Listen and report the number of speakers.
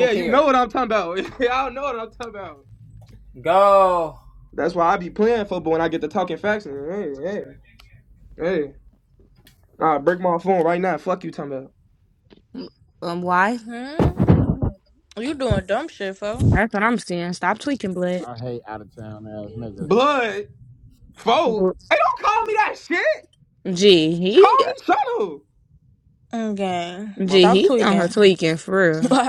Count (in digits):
5